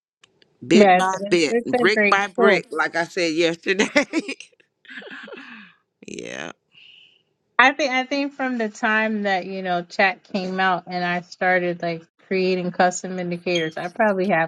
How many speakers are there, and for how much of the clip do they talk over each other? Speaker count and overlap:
2, about 10%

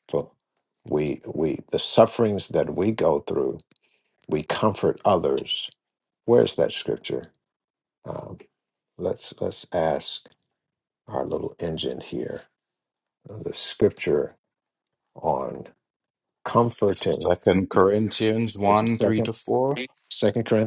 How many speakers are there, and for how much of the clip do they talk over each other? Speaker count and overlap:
2, about 5%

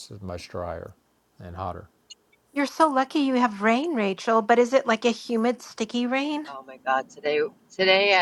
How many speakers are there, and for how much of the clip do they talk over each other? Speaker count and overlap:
3, under 1%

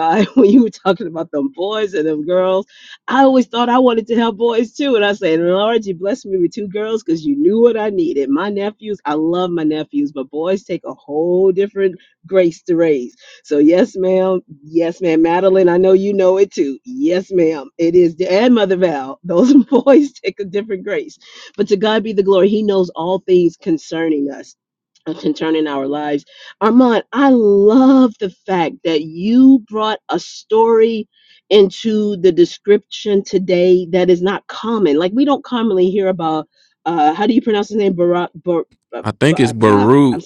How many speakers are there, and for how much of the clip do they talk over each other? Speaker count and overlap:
2, about 2%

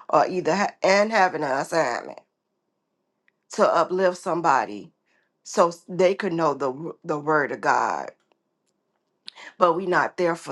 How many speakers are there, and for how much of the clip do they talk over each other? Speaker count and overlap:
1, no overlap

